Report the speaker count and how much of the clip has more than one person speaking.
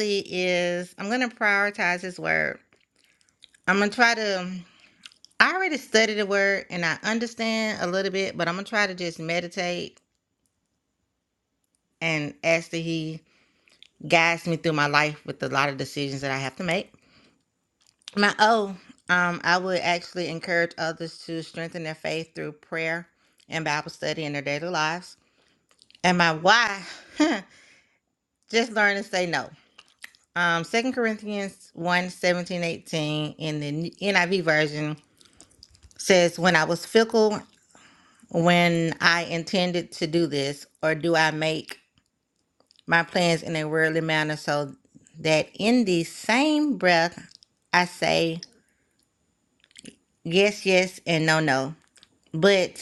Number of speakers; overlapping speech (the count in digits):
1, no overlap